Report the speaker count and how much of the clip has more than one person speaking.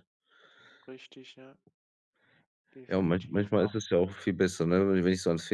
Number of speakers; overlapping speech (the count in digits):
2, about 16%